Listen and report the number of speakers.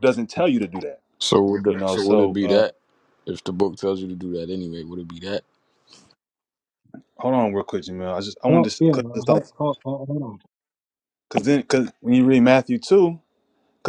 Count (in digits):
3